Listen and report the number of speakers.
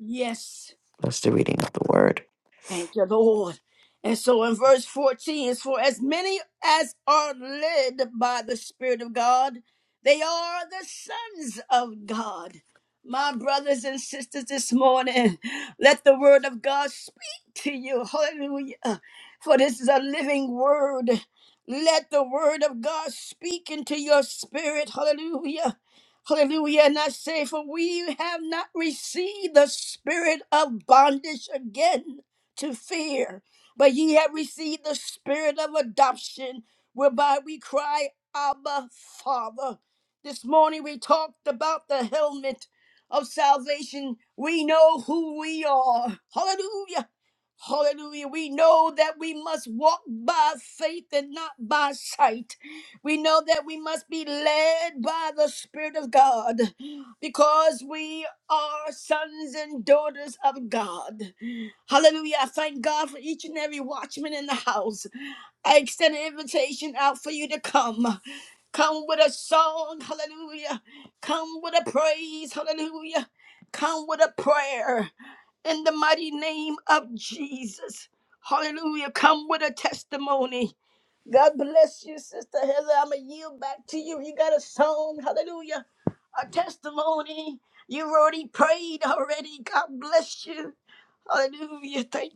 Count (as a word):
two